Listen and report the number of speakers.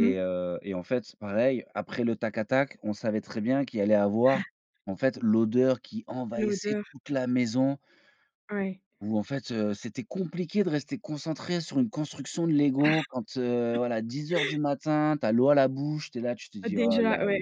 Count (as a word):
two